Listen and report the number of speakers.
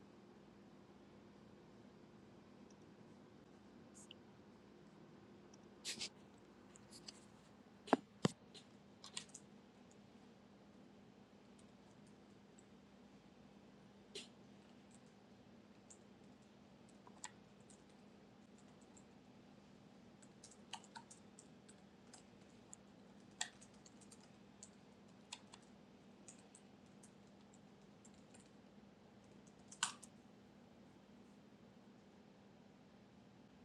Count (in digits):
0